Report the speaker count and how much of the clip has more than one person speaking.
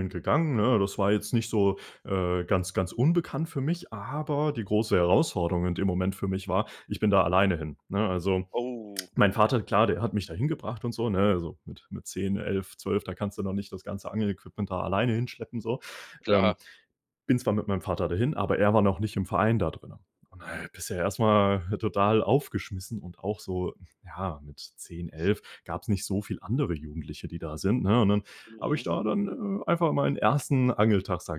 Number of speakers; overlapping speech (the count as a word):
two, about 2%